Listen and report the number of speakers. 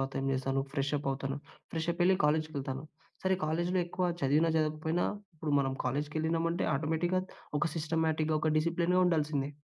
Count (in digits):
1